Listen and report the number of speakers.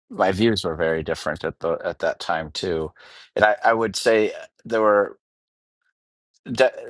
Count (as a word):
one